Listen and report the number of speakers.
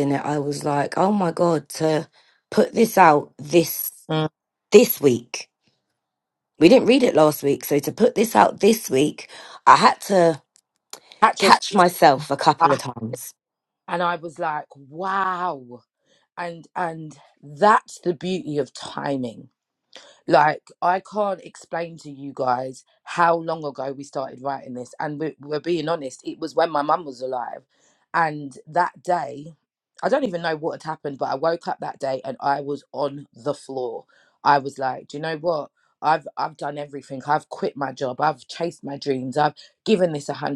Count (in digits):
2